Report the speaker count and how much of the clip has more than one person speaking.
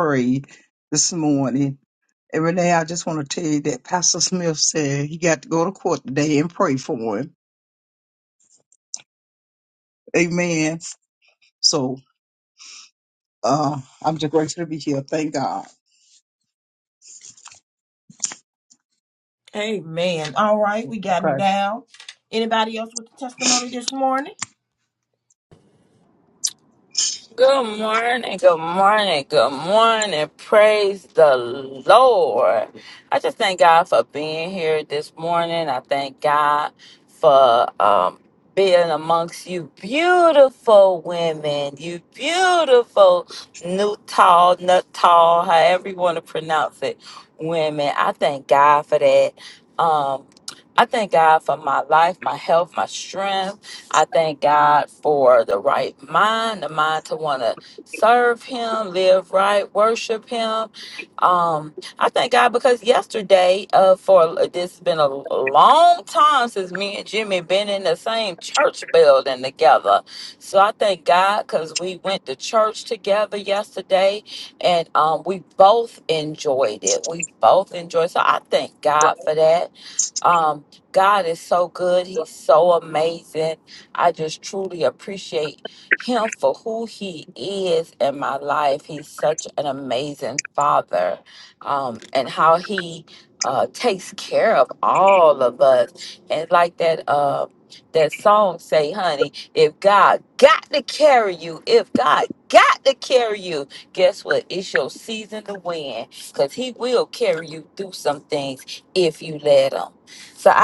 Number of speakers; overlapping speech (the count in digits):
3, no overlap